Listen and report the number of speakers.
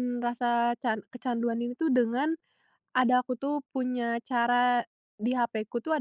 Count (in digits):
1